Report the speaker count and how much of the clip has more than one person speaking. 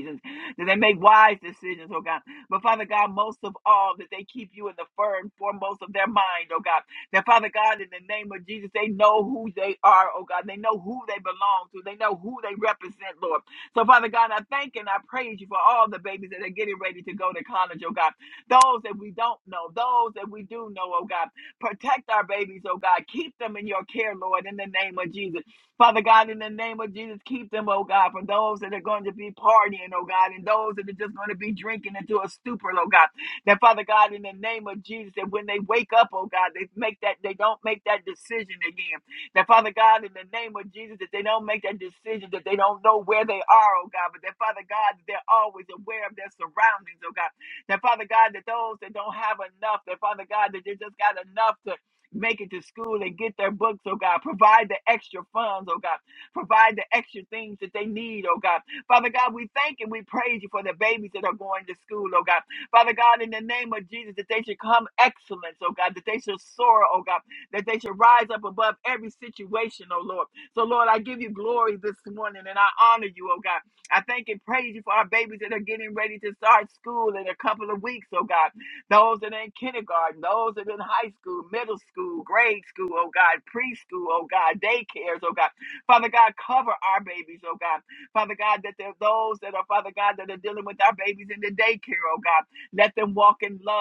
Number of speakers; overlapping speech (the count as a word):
one, no overlap